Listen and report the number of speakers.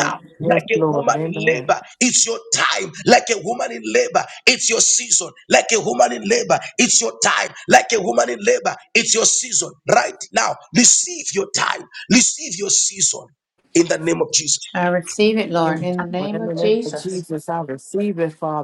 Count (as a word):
three